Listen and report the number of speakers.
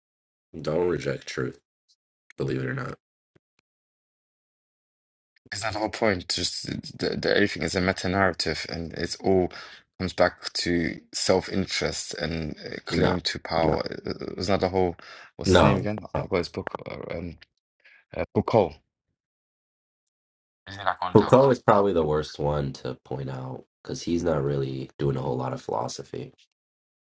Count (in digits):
2